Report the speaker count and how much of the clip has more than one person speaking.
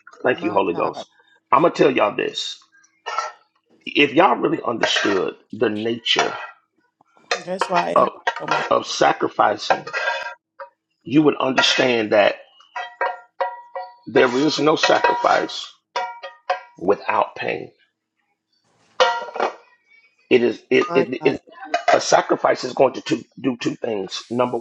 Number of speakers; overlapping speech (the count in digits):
2, about 5%